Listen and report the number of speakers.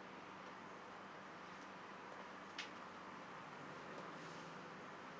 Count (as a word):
zero